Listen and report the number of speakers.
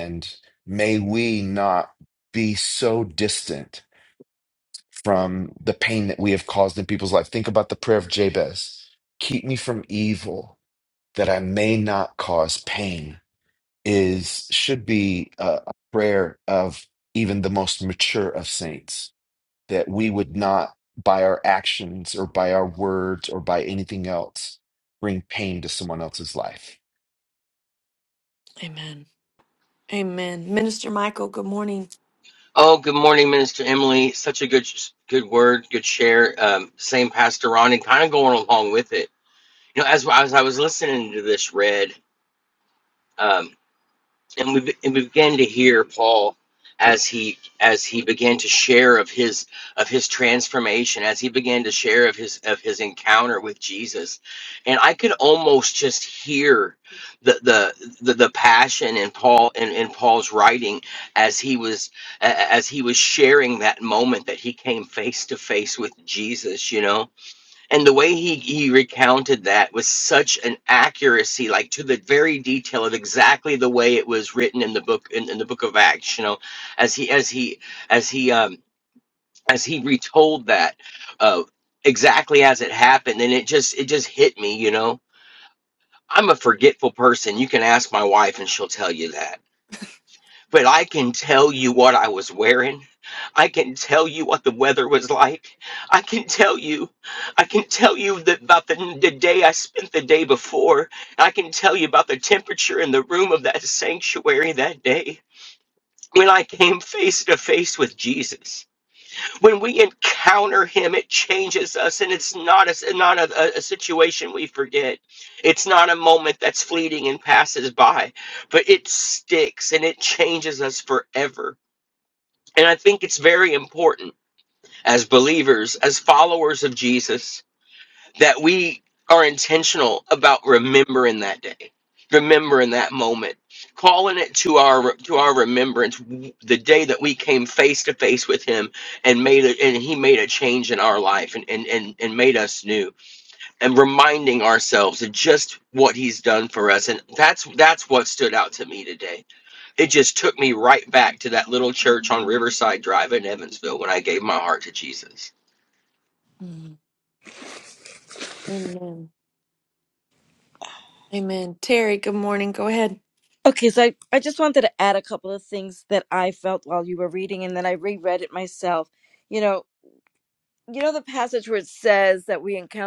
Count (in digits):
4